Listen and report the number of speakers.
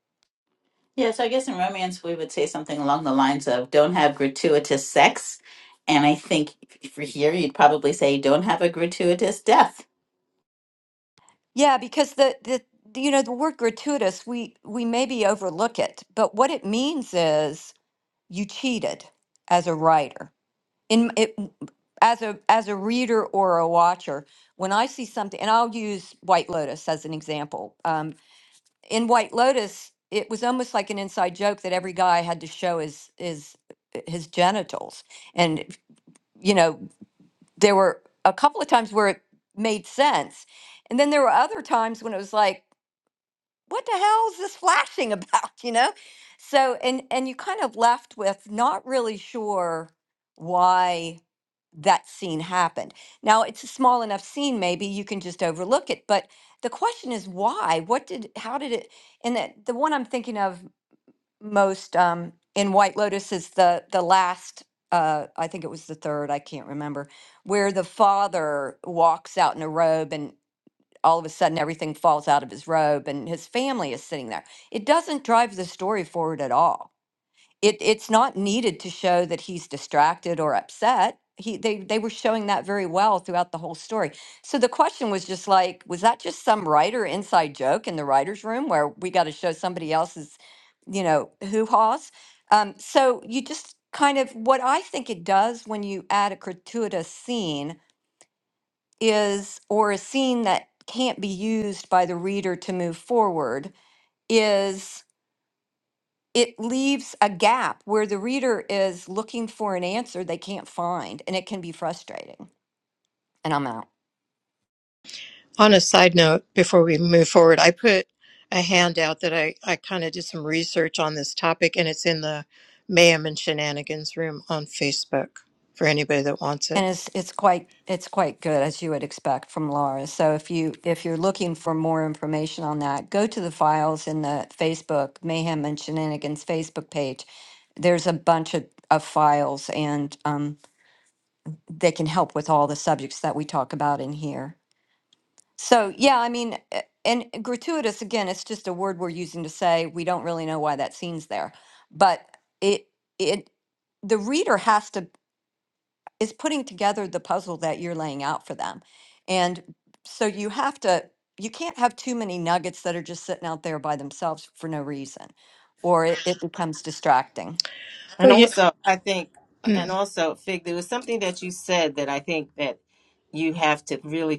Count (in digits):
4